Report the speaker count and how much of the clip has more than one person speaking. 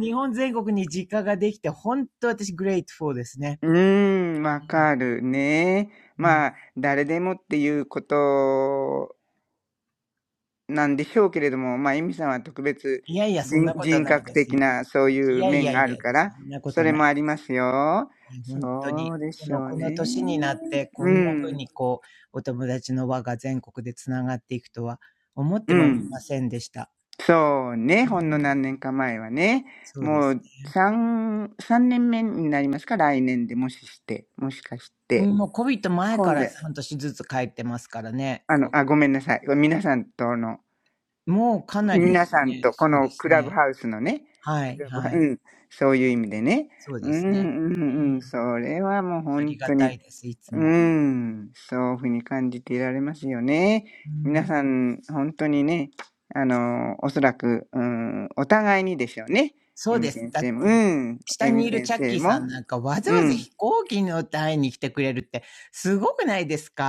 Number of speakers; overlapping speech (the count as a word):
two, about 18%